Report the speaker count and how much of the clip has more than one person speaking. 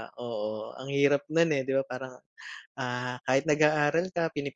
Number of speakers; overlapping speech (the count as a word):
one, no overlap